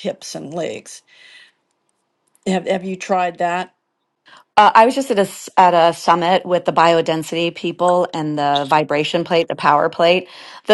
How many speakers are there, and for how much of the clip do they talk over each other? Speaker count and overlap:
2, no overlap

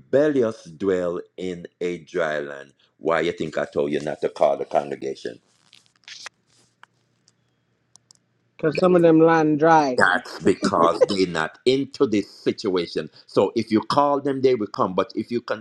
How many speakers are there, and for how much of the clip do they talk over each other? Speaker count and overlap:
2, about 1%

